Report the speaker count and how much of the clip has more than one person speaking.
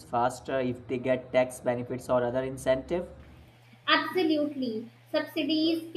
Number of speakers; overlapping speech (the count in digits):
2, no overlap